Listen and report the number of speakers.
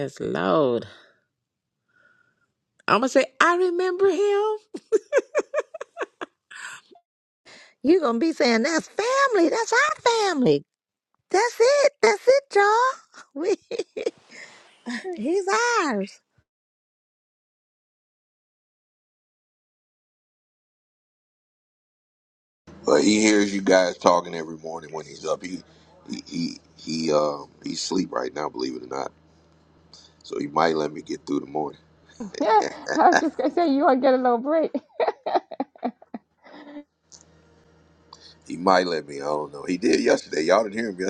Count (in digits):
4